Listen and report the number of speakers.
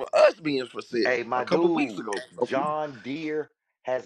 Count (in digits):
2